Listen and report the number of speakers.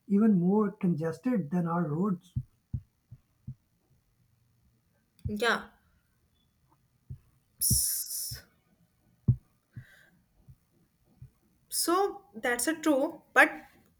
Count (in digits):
2